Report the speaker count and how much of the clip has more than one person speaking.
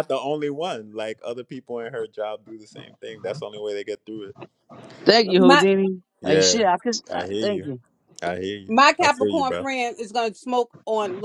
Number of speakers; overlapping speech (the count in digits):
3, about 18%